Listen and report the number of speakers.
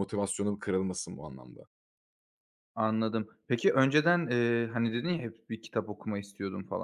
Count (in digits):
2